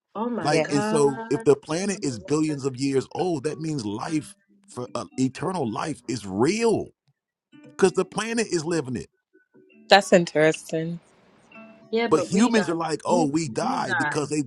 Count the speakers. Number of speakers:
3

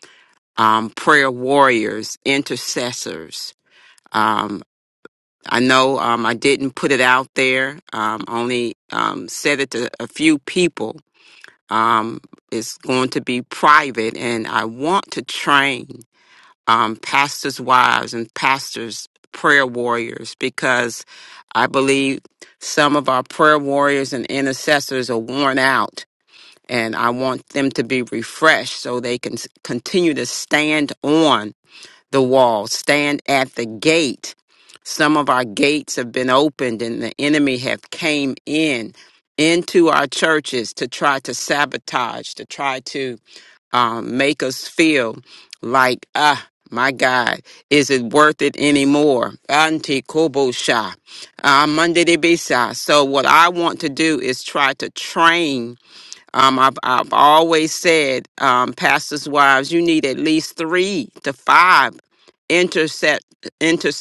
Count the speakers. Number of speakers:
1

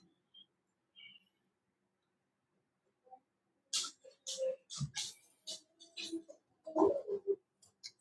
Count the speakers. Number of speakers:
0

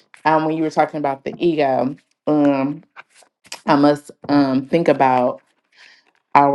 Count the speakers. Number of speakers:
1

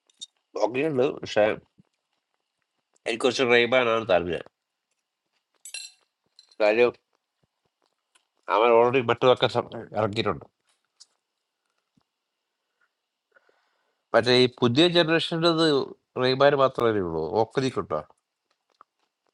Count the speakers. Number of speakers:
1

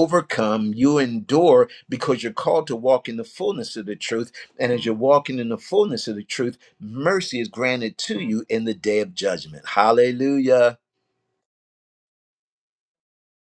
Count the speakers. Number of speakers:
1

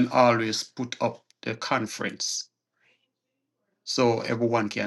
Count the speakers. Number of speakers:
1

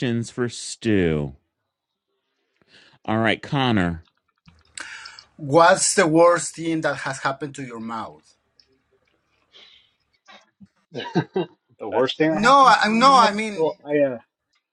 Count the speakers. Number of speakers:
3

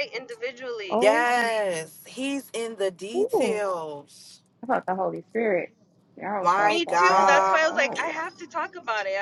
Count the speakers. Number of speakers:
3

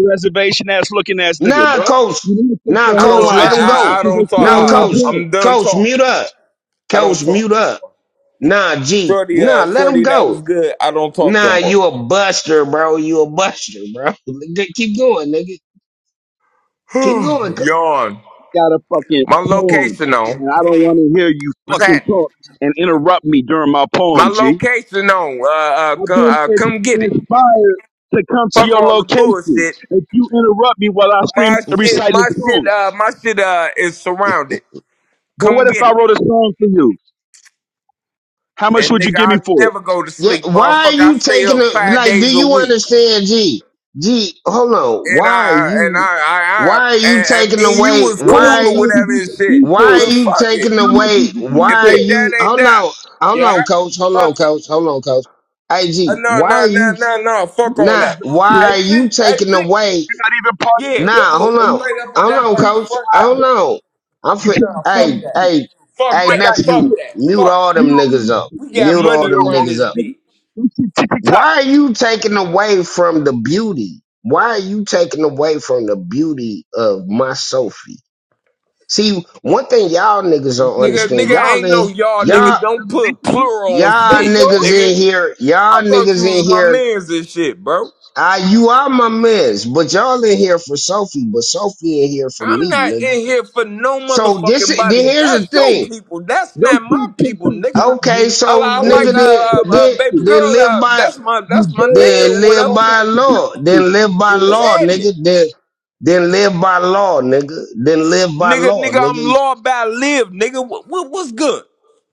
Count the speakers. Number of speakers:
3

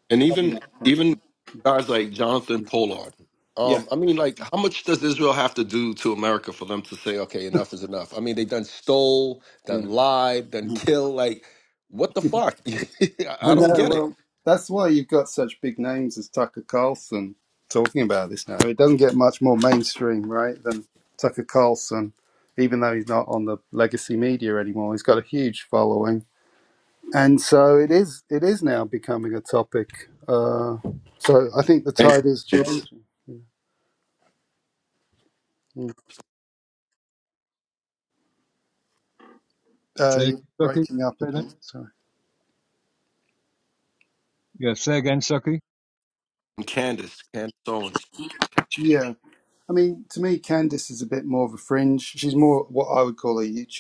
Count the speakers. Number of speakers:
3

